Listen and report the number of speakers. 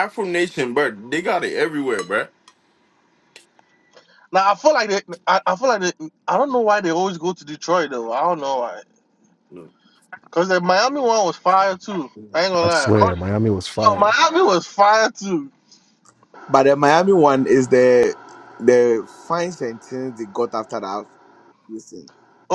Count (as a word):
four